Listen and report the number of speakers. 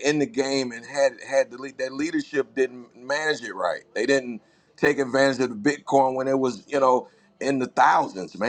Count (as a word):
one